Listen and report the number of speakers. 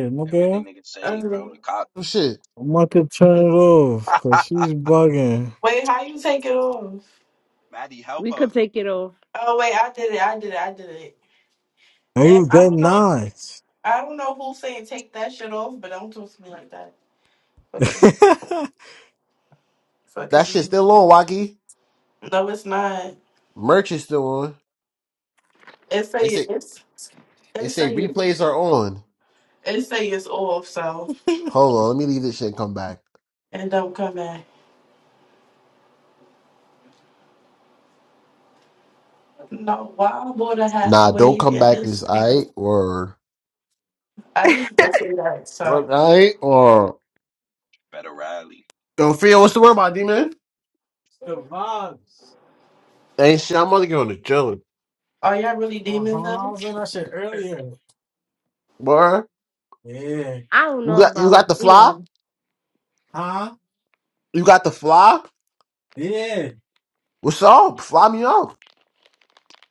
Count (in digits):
5